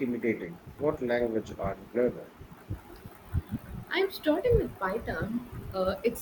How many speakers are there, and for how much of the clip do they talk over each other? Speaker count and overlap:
two, no overlap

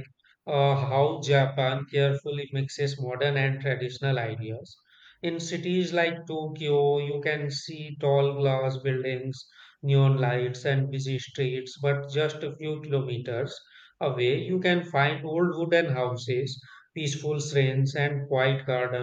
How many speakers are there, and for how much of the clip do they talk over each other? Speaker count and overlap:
one, no overlap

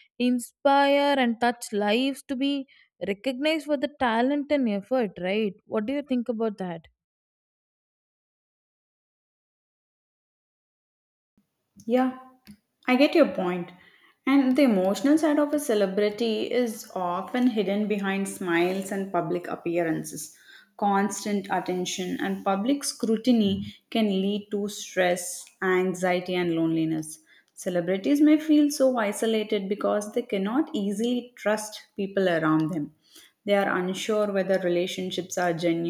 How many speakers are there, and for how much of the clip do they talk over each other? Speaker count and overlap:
two, no overlap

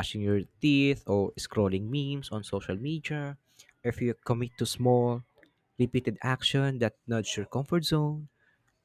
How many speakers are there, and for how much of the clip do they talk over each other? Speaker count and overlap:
one, no overlap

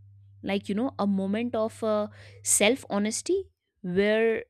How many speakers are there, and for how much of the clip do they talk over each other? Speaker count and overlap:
one, no overlap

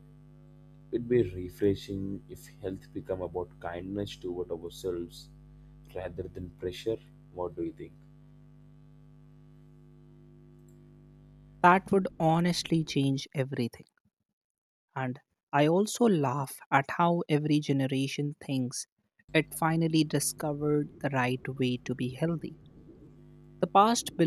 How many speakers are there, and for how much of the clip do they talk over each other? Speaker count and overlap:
two, no overlap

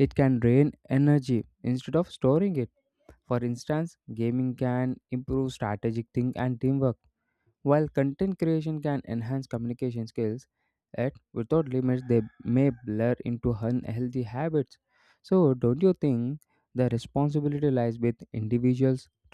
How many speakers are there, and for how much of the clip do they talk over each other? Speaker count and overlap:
one, no overlap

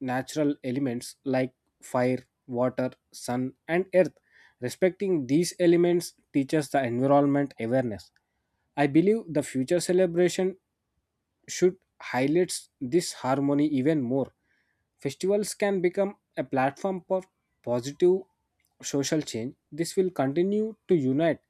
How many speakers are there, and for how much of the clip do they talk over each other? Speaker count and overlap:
one, no overlap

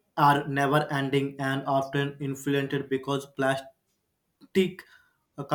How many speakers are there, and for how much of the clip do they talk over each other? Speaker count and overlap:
one, no overlap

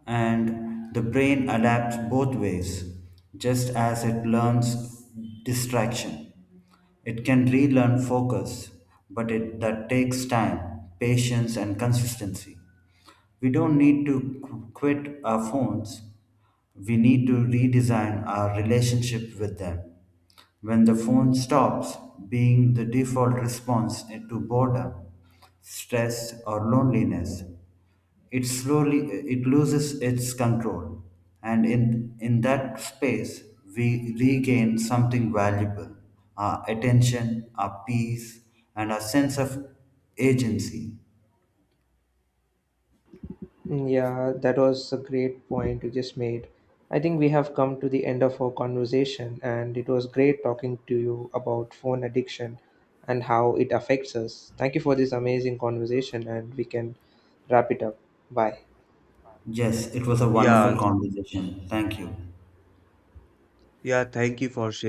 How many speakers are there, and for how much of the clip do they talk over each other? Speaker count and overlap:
three, about 1%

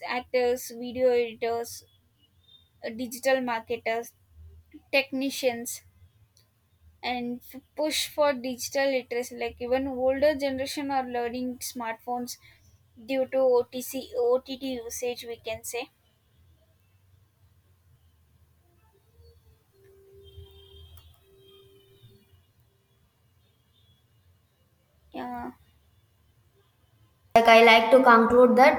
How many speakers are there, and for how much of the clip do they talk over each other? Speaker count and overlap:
two, no overlap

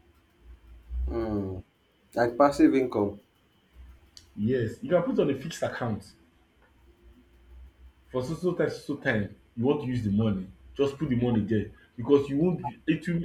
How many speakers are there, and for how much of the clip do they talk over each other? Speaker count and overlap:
two, no overlap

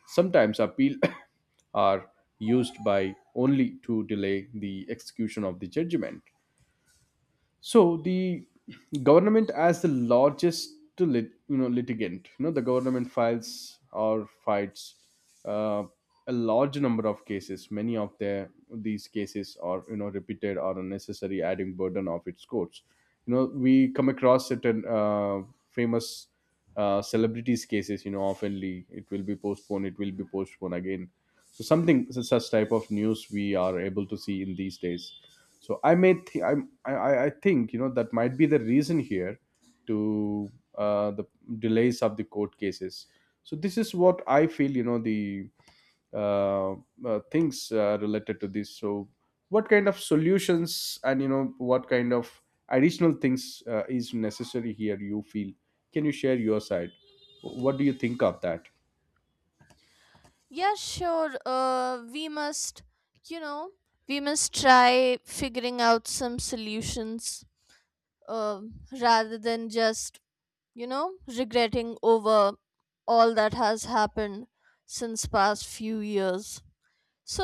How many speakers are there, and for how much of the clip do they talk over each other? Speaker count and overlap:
two, no overlap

